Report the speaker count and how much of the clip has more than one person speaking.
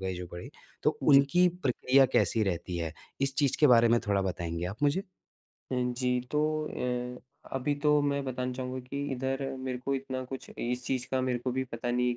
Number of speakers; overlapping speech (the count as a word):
two, about 2%